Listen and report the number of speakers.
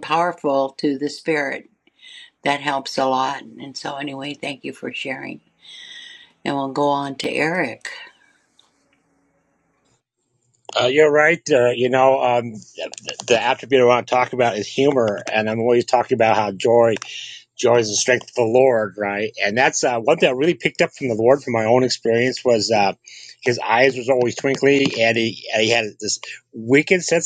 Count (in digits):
2